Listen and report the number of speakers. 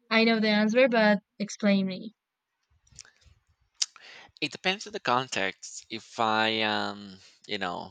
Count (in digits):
2